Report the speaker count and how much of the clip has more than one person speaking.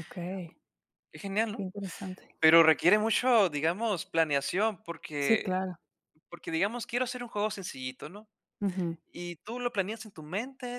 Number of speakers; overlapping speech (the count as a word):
two, about 4%